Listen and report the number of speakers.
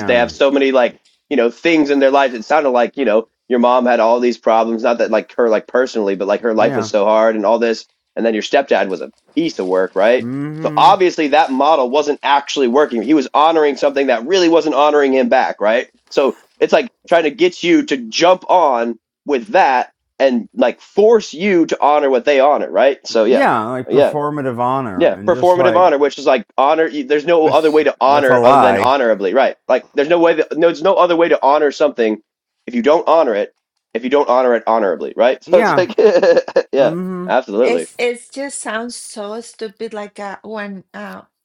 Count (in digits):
3